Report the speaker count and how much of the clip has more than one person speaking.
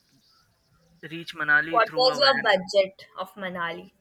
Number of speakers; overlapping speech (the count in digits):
2, about 21%